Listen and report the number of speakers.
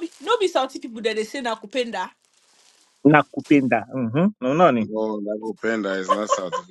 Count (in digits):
3